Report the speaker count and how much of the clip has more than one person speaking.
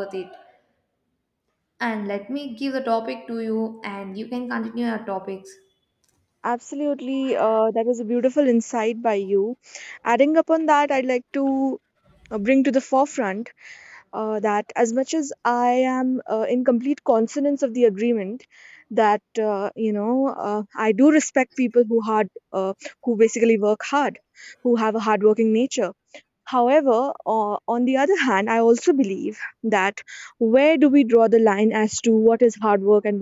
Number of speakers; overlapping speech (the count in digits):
2, no overlap